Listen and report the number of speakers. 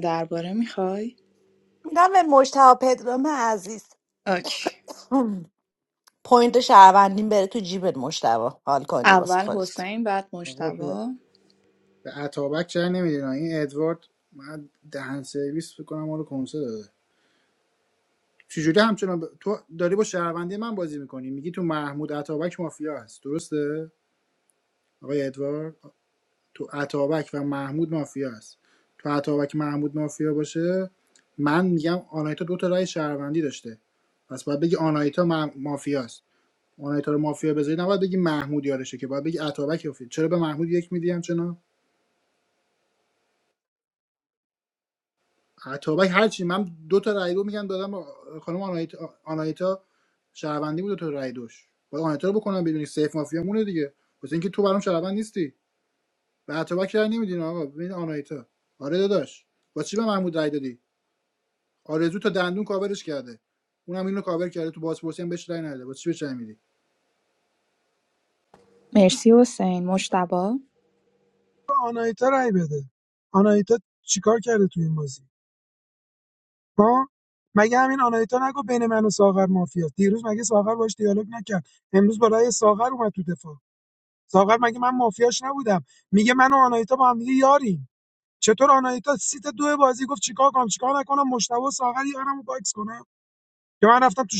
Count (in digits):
4